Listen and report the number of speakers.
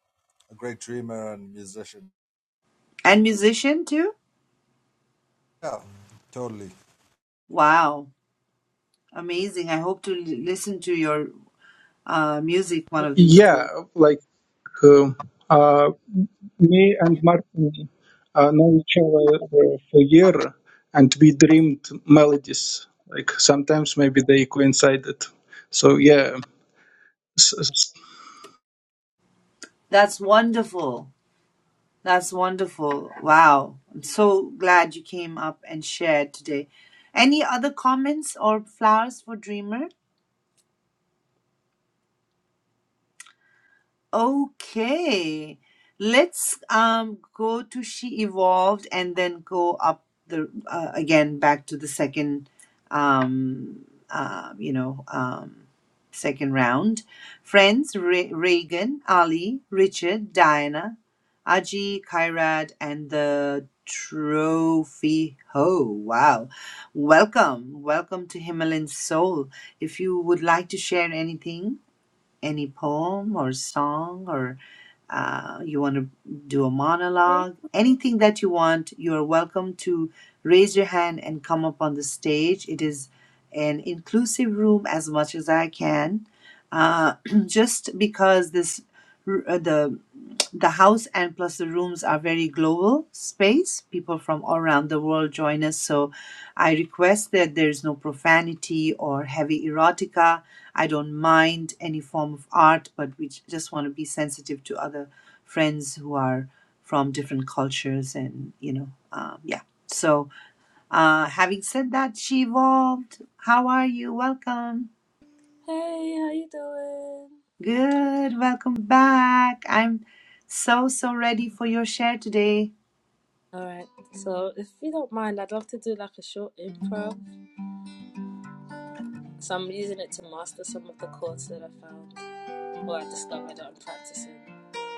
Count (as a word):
four